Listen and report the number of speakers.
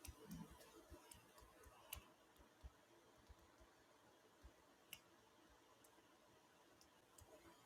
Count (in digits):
0